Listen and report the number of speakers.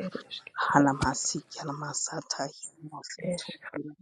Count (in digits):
2